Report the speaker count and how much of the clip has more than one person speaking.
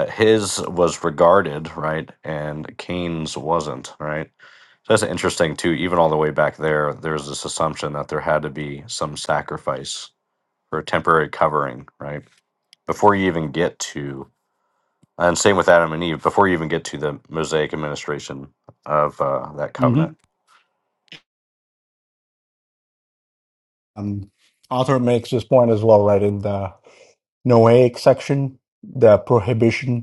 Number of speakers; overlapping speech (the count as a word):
two, about 1%